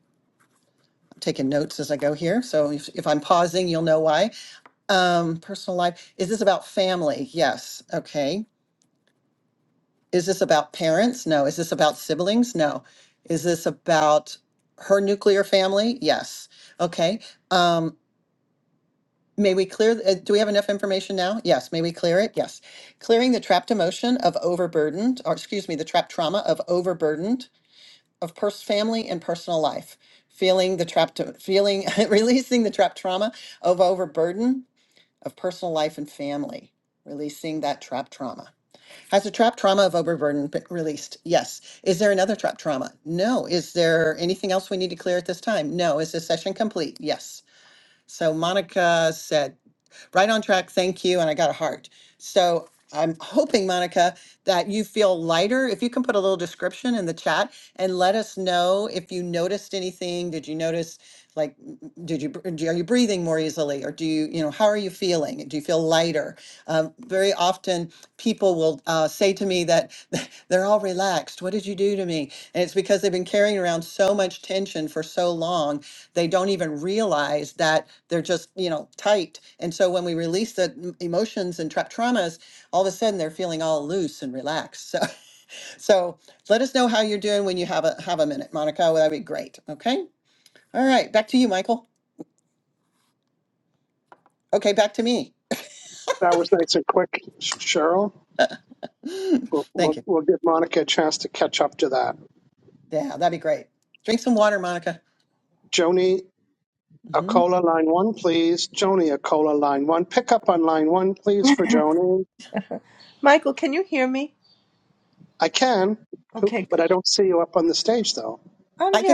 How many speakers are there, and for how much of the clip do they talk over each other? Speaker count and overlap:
3, about 1%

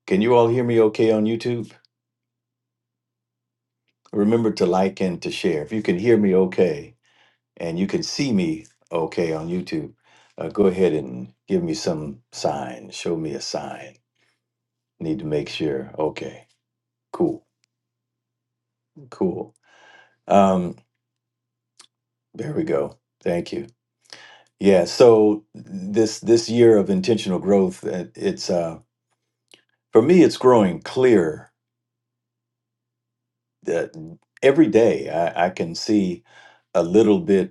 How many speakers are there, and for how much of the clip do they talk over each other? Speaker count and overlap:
1, no overlap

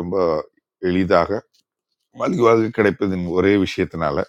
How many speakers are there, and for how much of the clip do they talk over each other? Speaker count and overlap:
1, no overlap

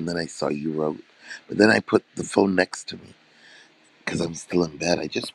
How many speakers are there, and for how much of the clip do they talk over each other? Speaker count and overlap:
1, no overlap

